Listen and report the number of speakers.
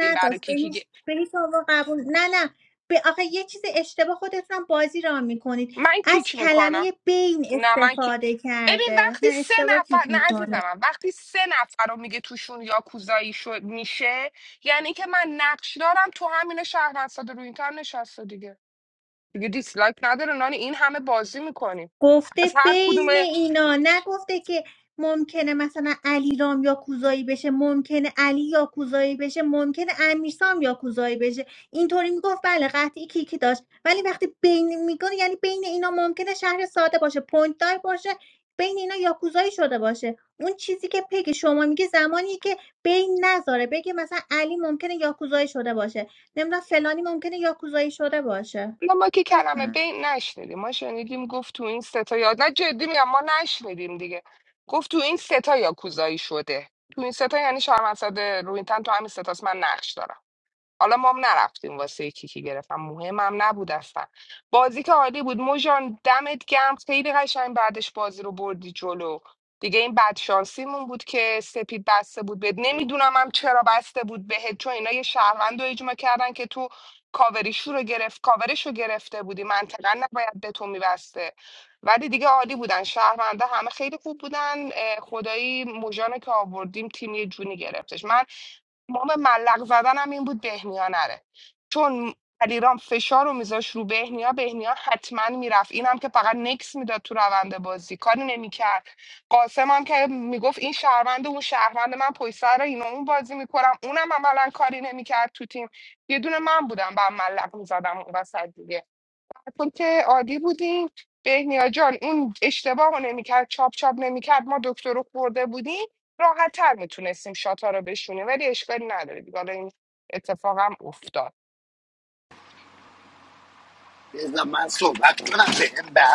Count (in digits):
3